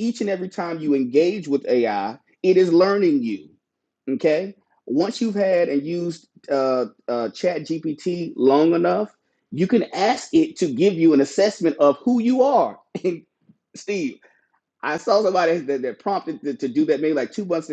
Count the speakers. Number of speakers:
one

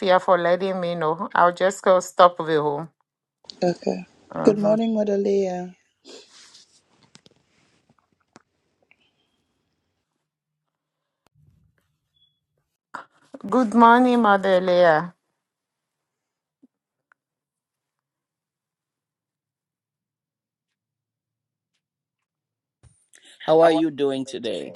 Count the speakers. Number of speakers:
three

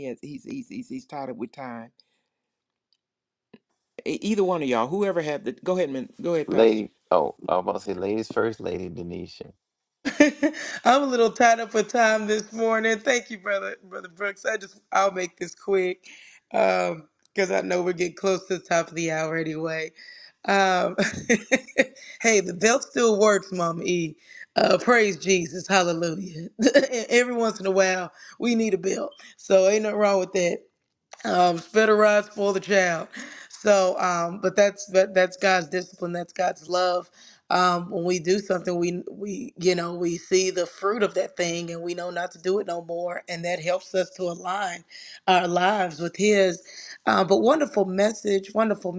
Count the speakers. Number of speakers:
three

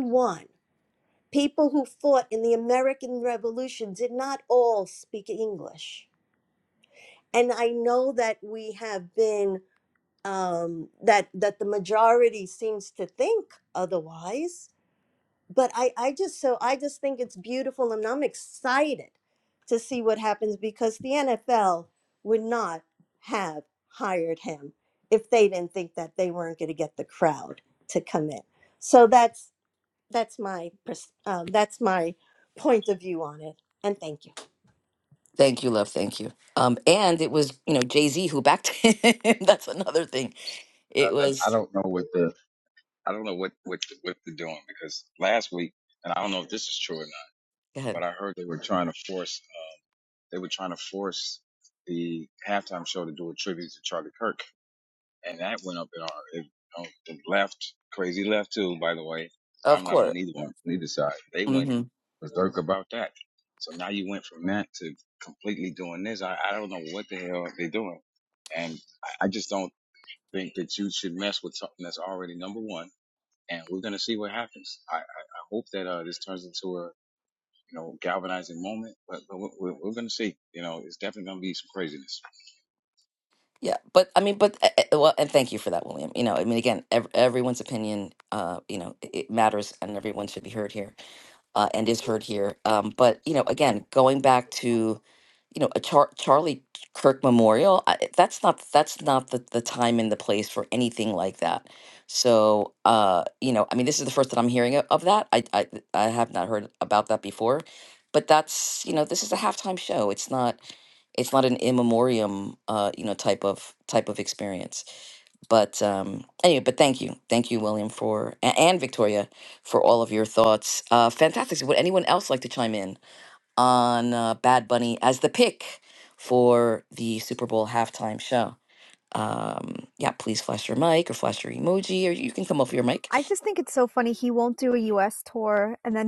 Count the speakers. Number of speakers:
four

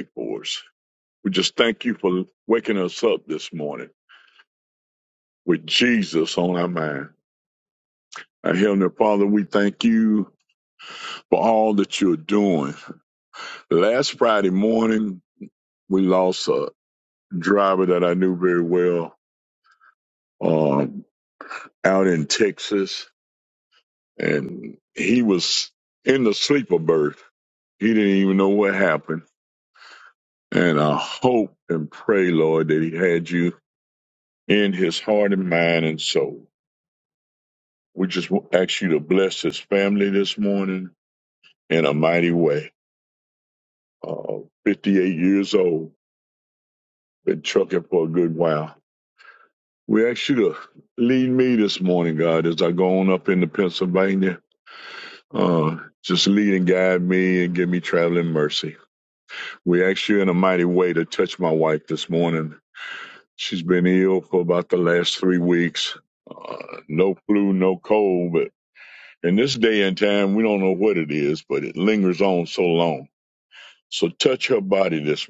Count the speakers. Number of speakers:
one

